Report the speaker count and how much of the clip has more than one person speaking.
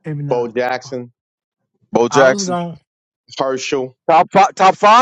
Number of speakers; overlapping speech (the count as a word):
three, about 12%